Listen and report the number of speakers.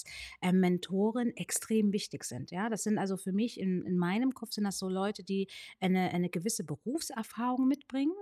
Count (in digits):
1